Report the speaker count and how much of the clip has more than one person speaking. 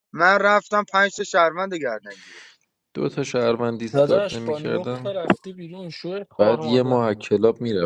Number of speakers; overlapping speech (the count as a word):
three, about 22%